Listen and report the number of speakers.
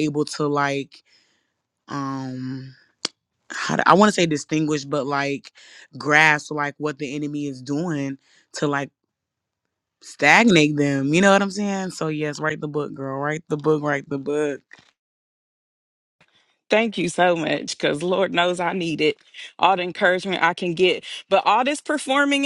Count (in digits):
2